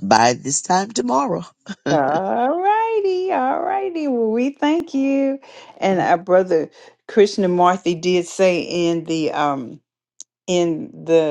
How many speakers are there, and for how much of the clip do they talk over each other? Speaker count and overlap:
two, no overlap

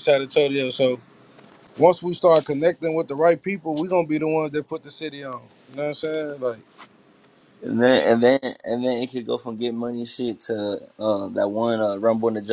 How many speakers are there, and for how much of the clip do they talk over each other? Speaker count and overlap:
two, no overlap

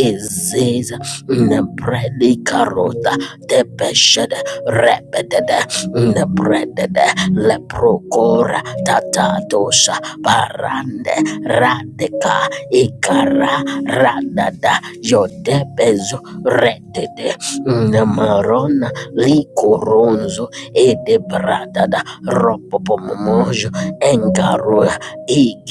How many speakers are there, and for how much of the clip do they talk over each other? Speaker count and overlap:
one, no overlap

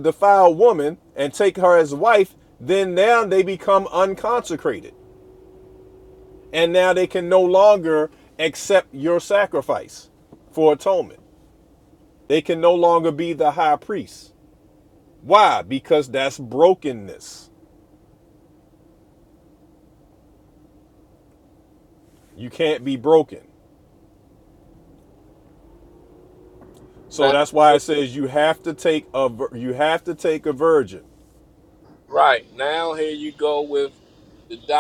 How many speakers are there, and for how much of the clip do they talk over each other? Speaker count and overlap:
two, about 1%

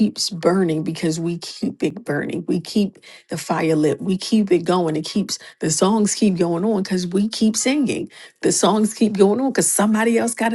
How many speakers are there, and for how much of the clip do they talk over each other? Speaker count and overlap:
one, no overlap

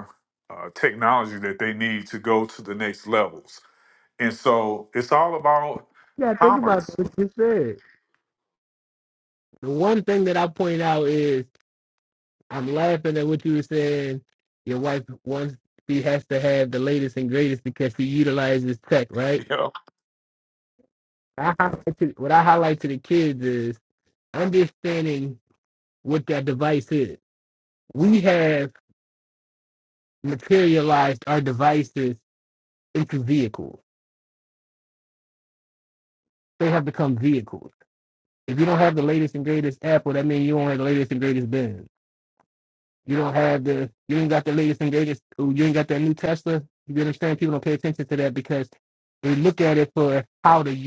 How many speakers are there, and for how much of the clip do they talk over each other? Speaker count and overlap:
two, about 1%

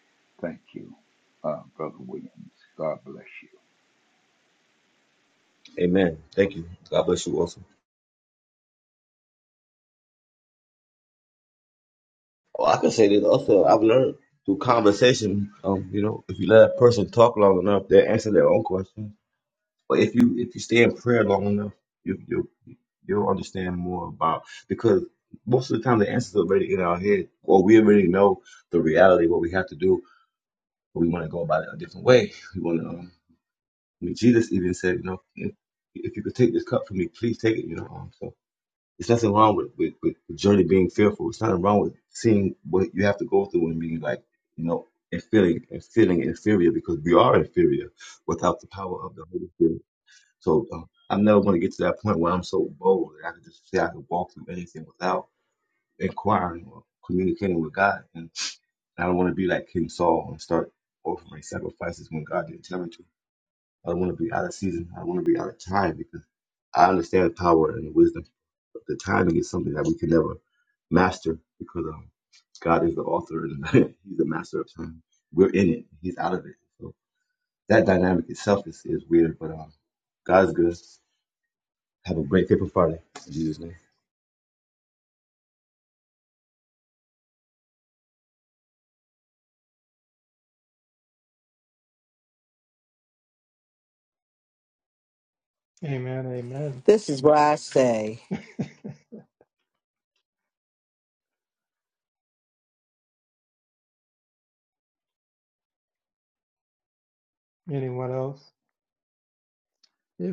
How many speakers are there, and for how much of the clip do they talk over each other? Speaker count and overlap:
four, no overlap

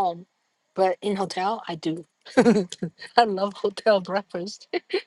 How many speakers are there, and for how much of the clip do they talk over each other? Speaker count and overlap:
one, no overlap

